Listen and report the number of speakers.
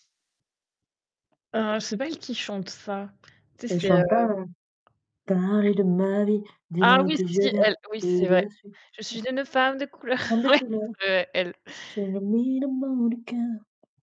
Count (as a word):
two